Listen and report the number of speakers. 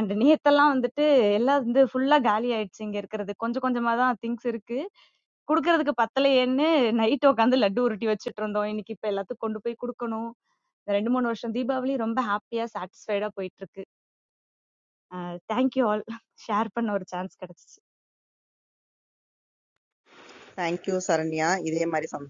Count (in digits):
2